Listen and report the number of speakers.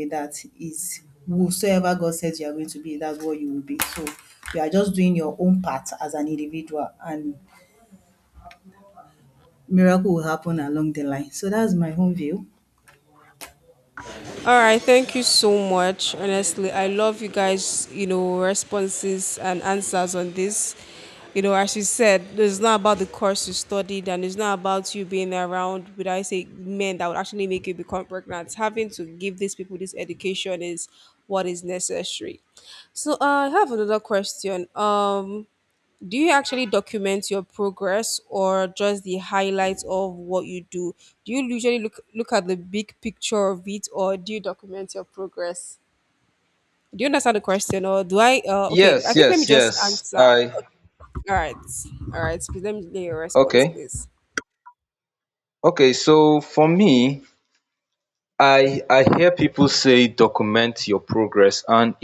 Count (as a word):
three